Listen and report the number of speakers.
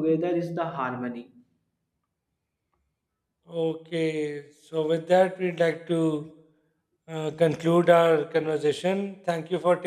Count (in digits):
2